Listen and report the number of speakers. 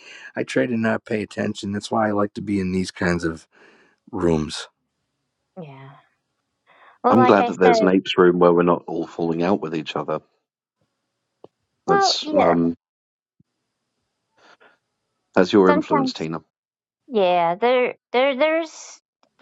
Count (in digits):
3